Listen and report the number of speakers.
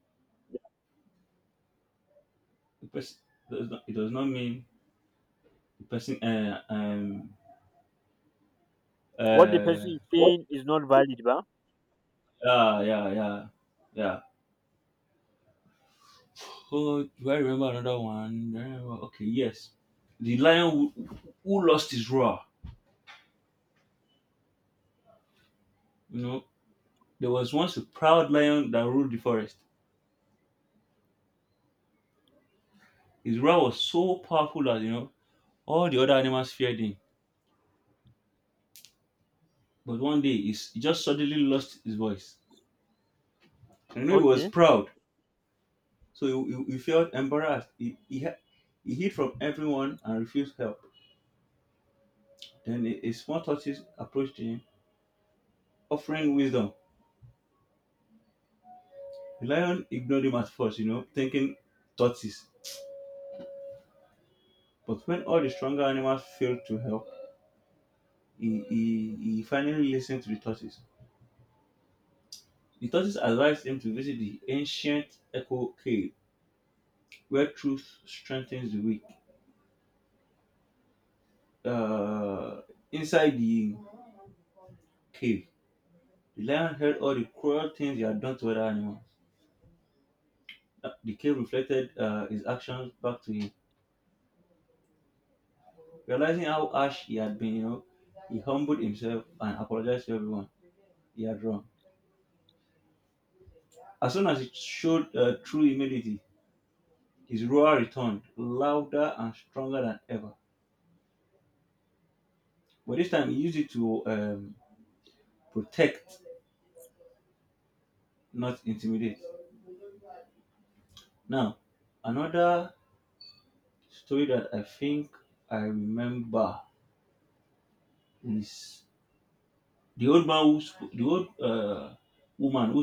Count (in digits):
2